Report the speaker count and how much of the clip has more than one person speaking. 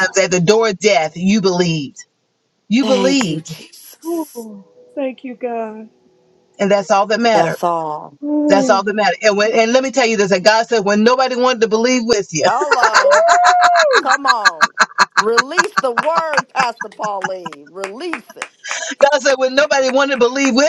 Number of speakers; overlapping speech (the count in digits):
3, about 9%